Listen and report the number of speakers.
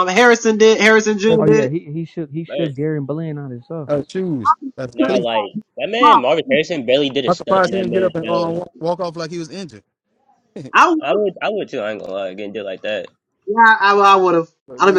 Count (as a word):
four